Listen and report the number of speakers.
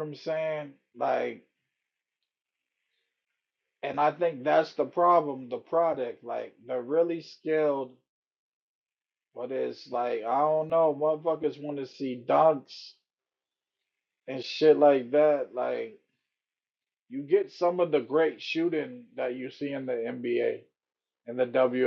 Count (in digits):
1